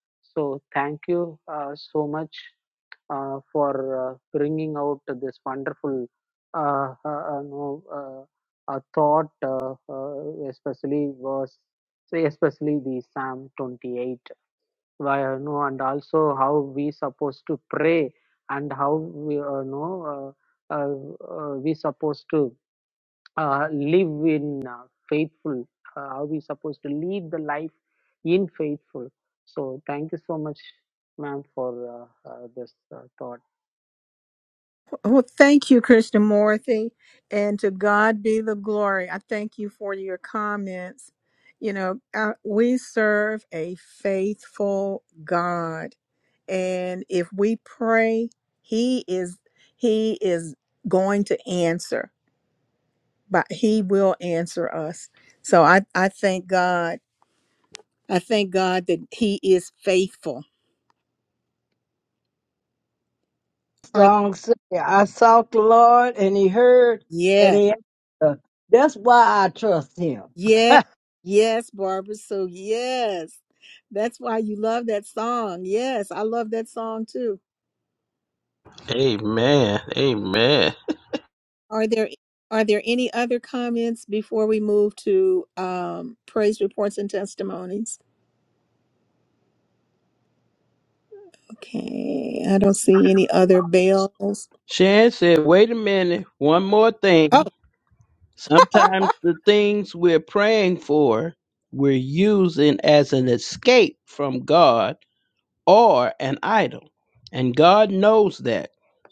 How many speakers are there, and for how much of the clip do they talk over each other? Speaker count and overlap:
four, under 1%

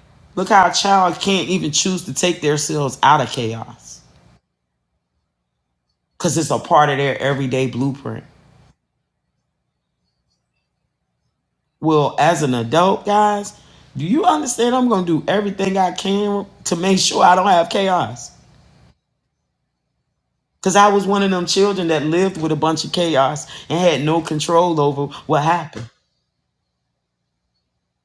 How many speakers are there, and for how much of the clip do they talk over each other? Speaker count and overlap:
one, no overlap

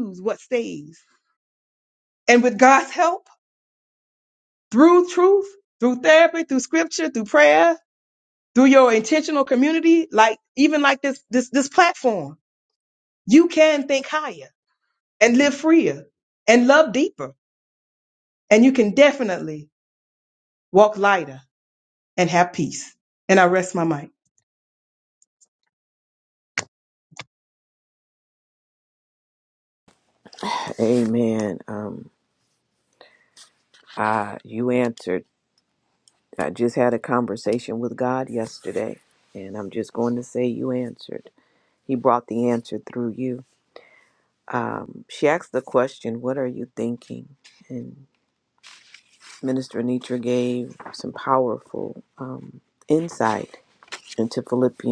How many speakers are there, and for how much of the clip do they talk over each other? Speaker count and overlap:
two, no overlap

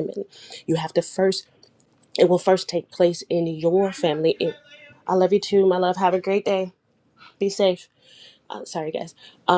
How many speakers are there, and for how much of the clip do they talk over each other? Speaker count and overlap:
one, no overlap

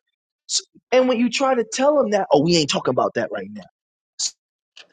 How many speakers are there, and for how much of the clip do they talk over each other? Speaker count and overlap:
one, no overlap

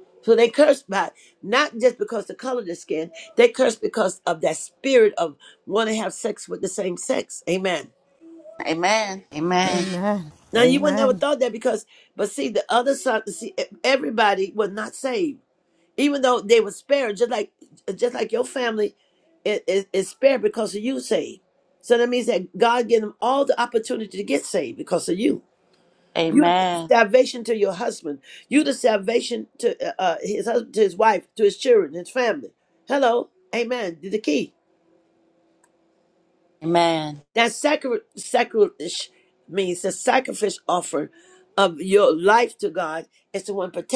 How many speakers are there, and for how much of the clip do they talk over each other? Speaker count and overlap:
three, about 3%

